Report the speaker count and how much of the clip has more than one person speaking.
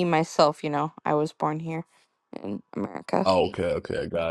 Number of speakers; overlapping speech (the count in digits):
2, under 1%